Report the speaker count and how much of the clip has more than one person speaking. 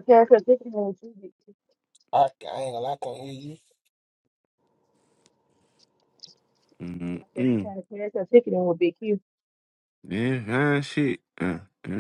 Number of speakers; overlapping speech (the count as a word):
three, about 2%